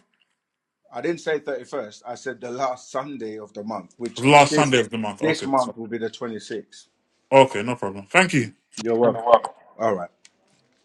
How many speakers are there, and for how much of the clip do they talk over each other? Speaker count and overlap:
two, about 12%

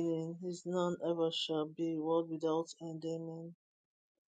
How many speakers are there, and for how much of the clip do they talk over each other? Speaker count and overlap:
one, no overlap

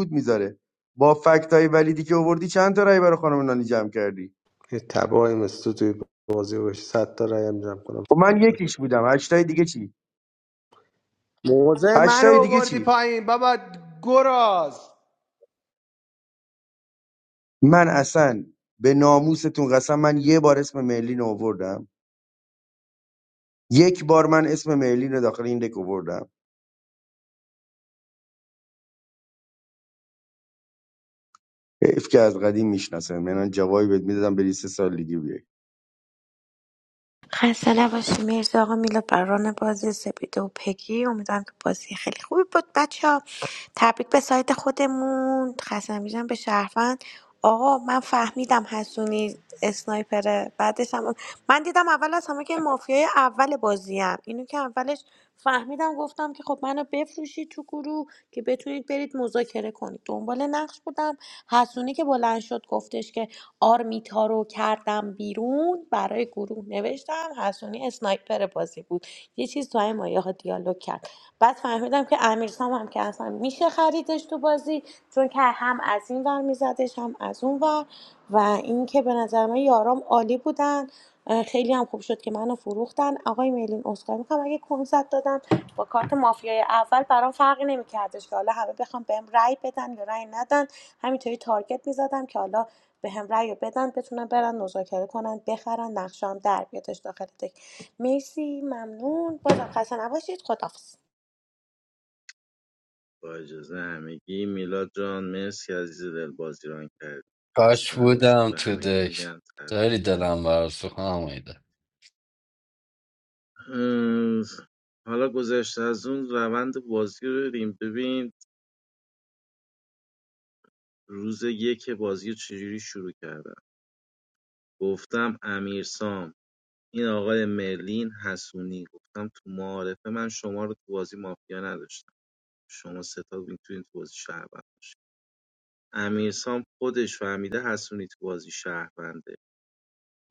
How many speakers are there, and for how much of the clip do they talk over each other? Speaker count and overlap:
five, about 2%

